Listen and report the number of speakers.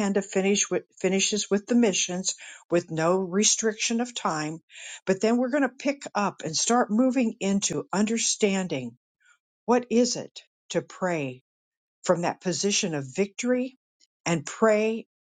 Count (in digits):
1